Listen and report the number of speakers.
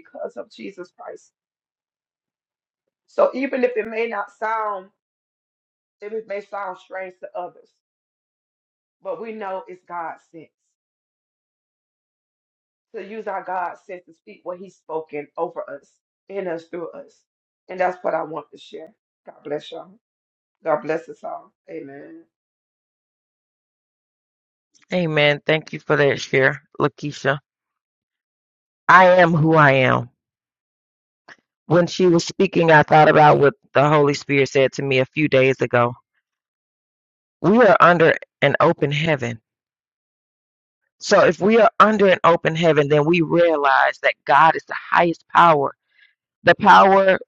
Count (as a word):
two